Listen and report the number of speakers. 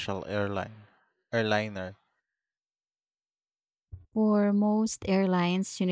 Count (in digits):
2